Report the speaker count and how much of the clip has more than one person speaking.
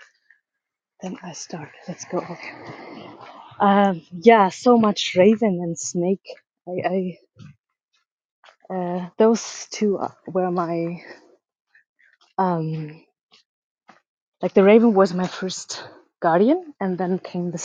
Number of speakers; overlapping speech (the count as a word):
one, no overlap